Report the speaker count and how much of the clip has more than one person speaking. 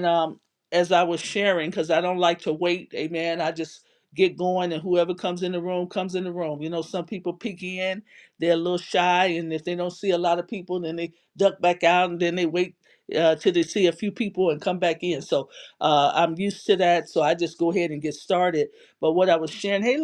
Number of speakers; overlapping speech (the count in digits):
1, no overlap